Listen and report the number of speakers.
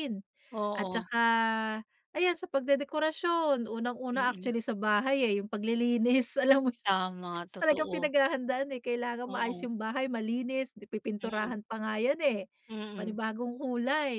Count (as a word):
two